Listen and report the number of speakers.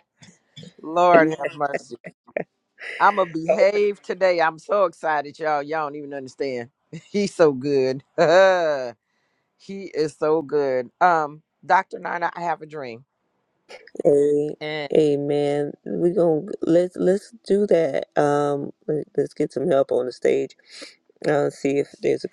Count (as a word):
two